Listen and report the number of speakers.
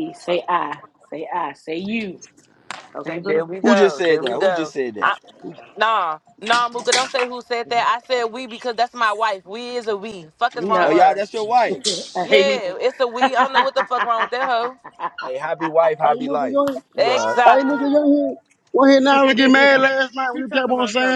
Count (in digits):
4